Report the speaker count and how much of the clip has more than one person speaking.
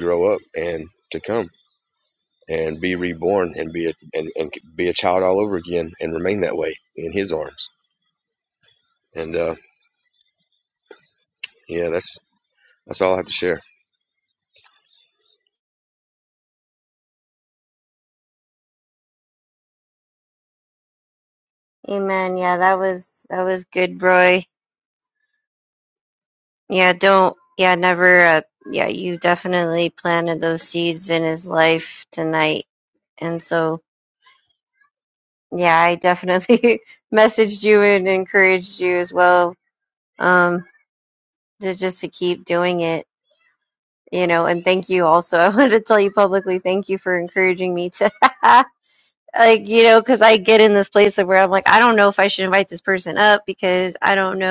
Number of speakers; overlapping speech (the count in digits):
2, no overlap